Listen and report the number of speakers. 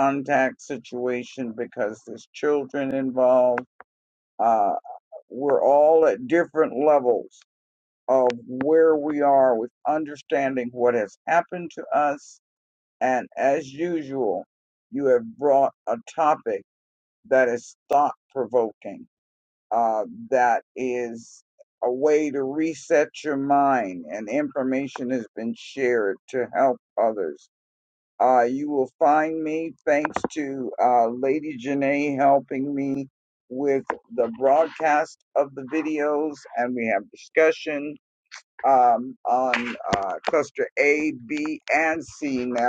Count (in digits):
1